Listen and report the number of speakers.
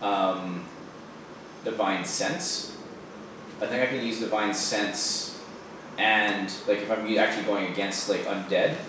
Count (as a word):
one